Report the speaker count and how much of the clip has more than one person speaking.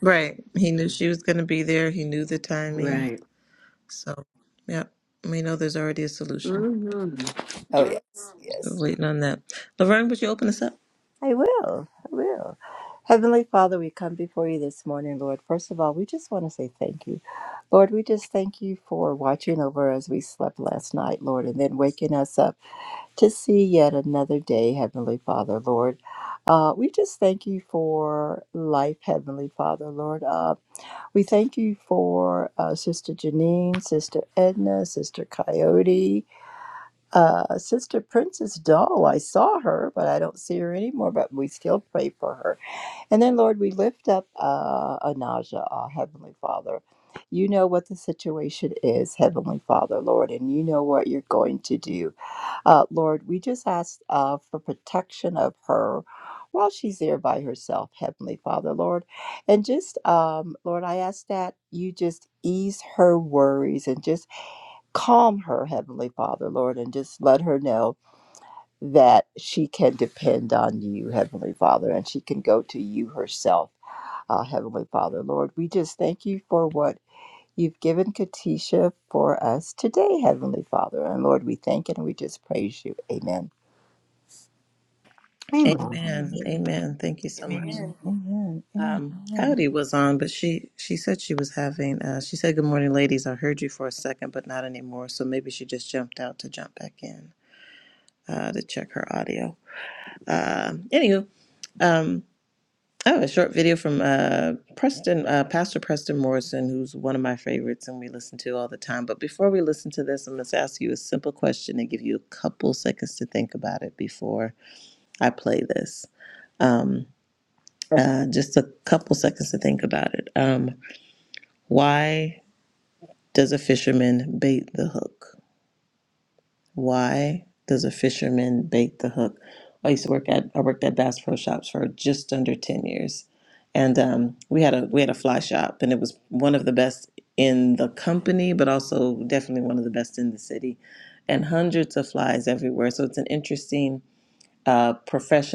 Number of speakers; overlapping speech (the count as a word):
three, about 1%